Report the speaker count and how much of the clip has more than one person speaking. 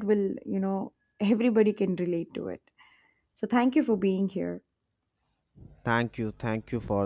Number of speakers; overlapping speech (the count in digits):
2, no overlap